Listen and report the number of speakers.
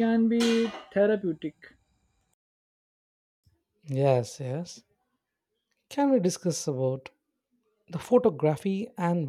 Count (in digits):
2